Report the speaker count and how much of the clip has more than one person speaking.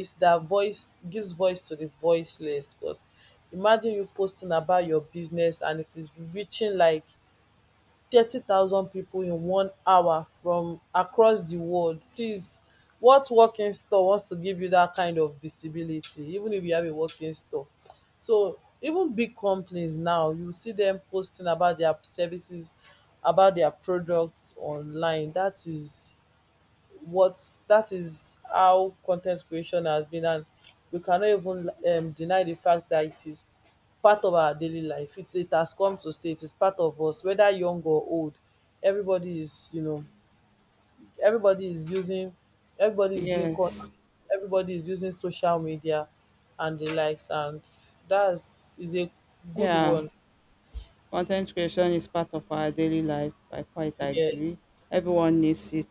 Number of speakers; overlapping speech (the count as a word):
two, about 3%